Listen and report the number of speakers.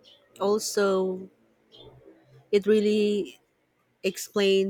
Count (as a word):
one